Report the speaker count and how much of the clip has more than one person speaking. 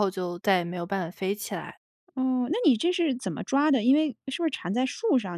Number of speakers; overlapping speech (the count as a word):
two, no overlap